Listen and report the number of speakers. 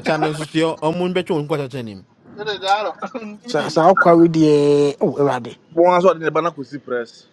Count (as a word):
four